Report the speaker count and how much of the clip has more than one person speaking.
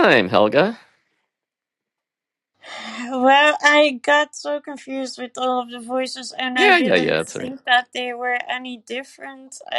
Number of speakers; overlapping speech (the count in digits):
2, about 10%